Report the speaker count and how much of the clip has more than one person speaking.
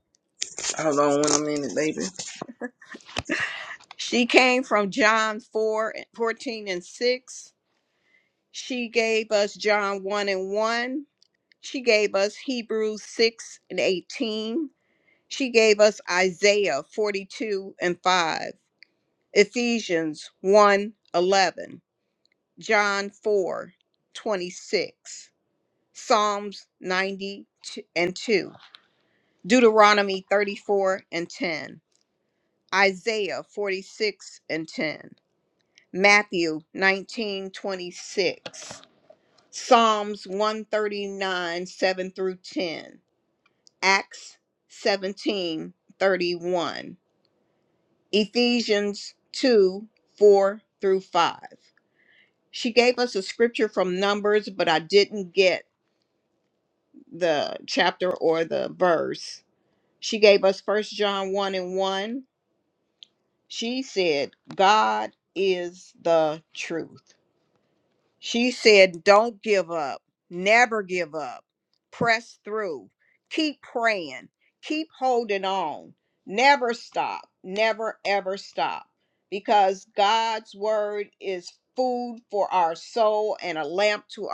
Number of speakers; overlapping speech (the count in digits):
2, no overlap